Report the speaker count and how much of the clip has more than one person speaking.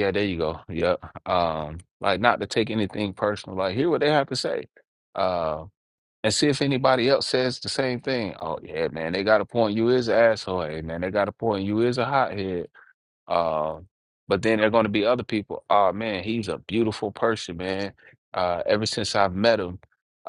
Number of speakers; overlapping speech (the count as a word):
one, no overlap